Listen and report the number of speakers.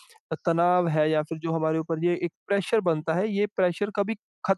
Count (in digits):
1